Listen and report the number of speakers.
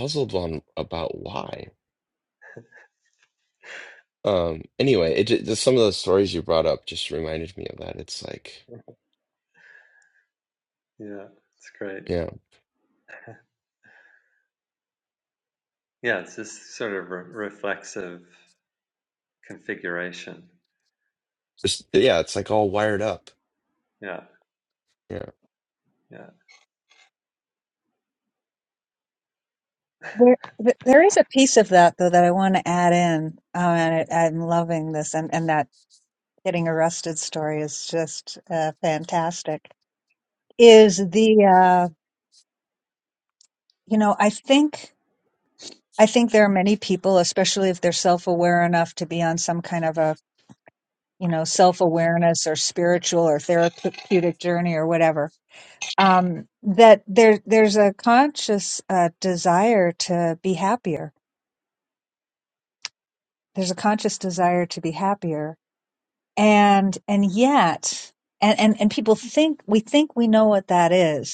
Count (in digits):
3